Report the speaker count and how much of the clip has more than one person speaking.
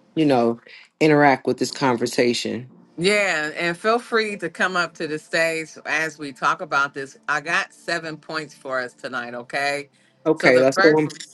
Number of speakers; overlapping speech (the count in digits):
2, about 6%